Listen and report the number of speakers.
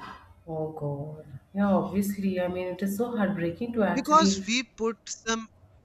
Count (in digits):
2